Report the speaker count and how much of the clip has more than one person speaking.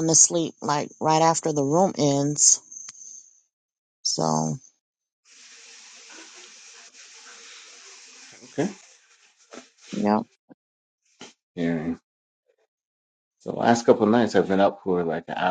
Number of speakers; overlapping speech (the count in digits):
2, no overlap